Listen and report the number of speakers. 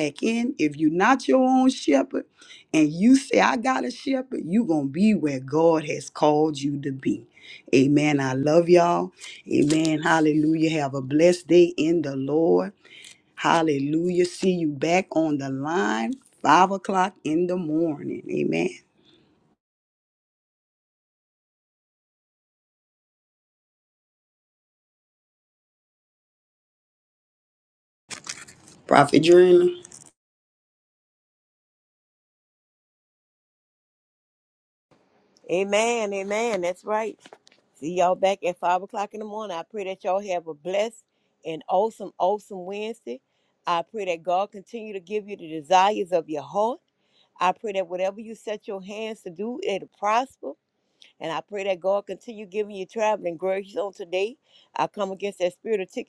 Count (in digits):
2